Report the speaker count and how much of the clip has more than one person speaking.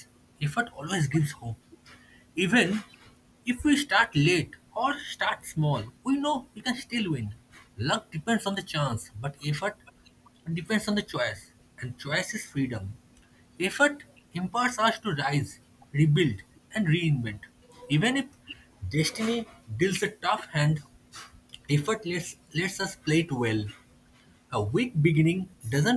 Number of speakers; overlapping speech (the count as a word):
one, no overlap